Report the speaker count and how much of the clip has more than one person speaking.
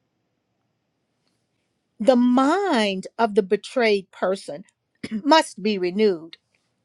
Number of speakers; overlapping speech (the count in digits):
1, no overlap